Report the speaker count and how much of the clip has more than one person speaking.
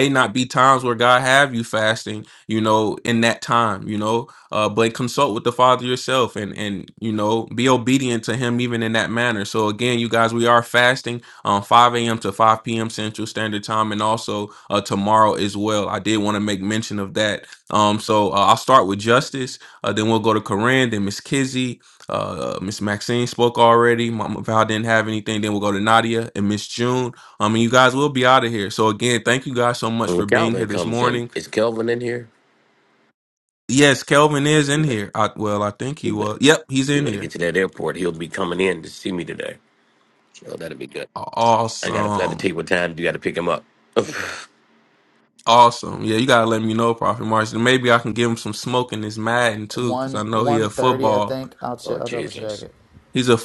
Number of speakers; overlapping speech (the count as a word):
three, about 9%